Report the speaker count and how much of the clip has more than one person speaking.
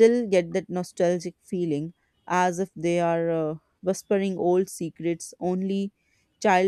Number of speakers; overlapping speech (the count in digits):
1, no overlap